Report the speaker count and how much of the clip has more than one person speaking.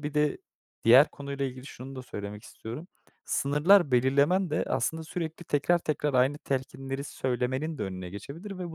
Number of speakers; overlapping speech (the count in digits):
1, no overlap